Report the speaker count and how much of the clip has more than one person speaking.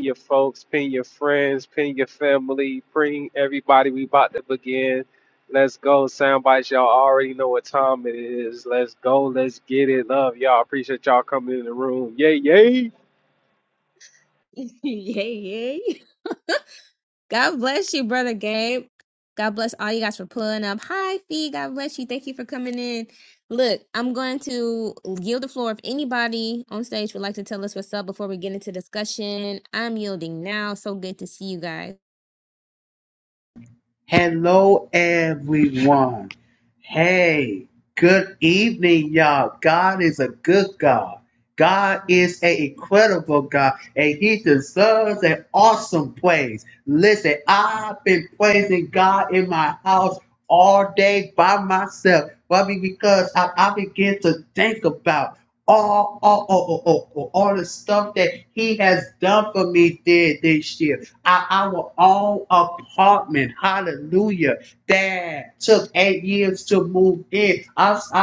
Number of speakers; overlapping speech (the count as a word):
three, no overlap